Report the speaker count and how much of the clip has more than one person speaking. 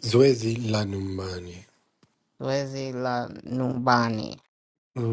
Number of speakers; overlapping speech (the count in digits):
2, no overlap